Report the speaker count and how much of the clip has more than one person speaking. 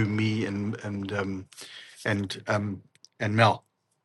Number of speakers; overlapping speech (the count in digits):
1, no overlap